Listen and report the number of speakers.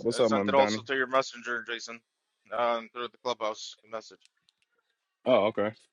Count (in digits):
2